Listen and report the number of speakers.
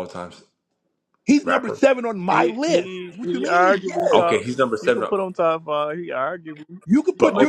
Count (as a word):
three